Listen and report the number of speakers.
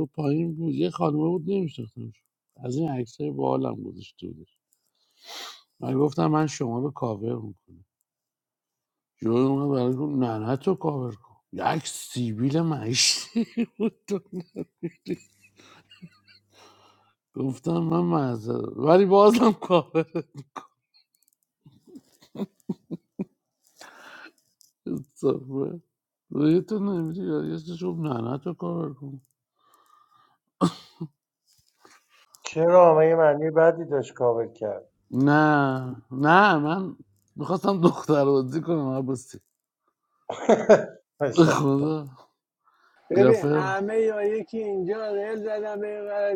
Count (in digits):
3